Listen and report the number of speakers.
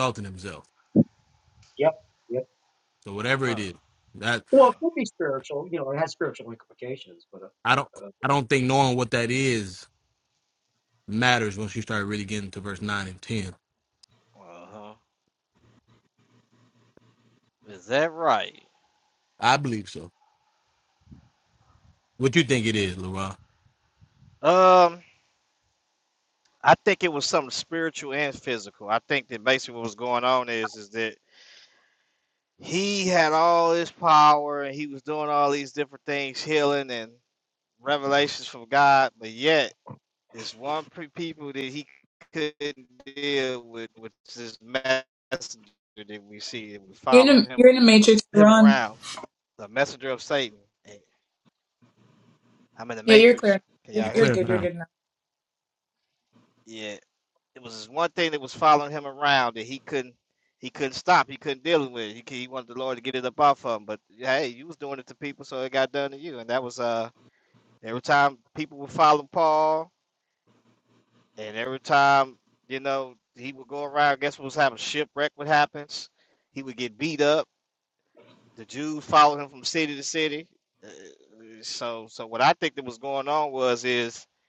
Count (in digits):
4